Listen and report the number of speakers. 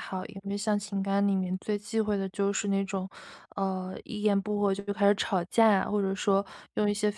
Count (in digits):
1